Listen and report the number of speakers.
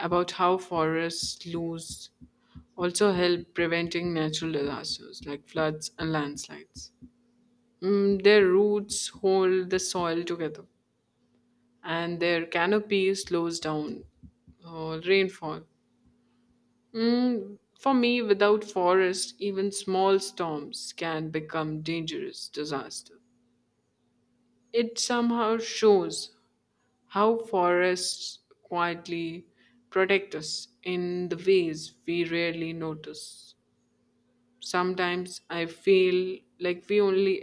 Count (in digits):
1